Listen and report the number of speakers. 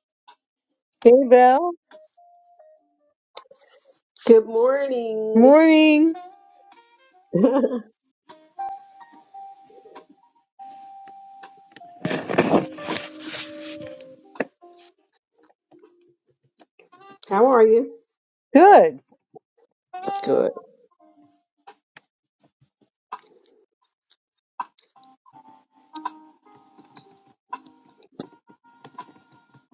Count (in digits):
2